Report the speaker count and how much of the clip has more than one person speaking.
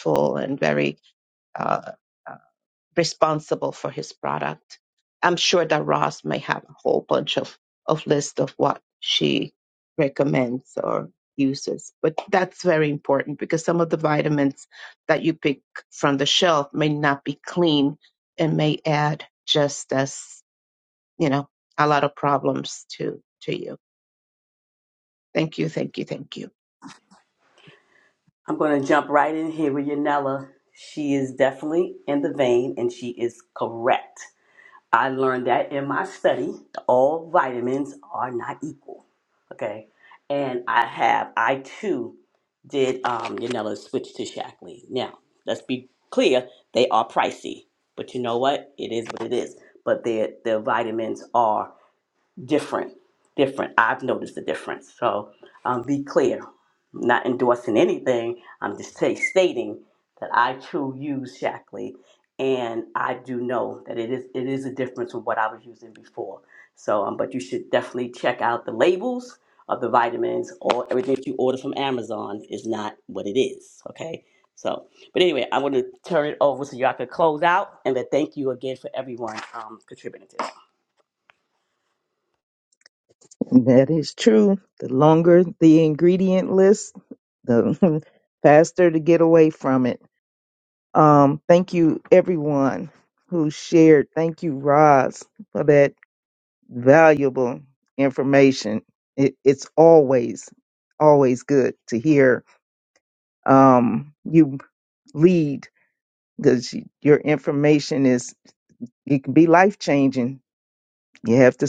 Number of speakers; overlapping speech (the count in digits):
3, no overlap